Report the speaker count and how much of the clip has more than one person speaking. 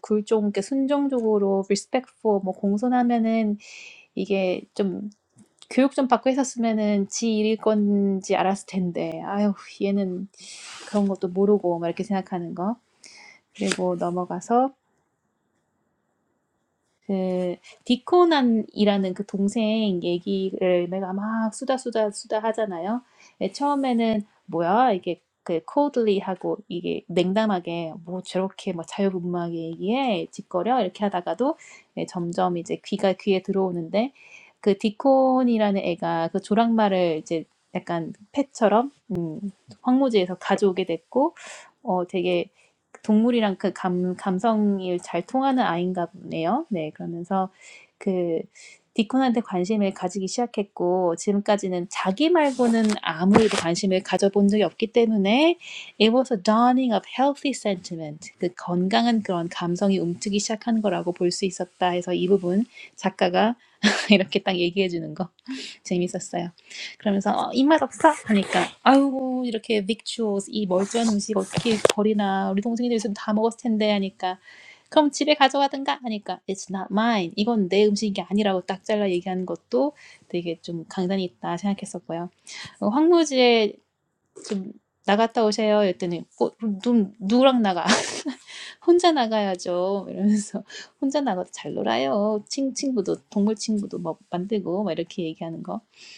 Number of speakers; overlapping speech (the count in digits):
1, no overlap